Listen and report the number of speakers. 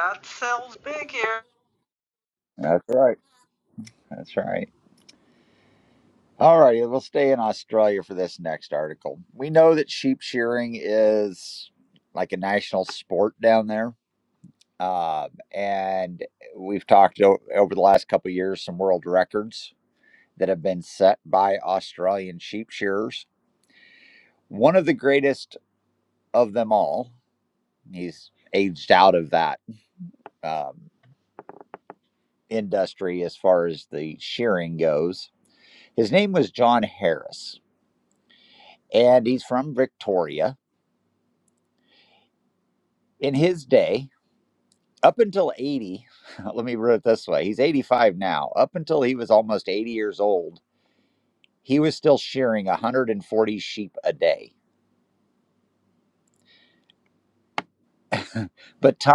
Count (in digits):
2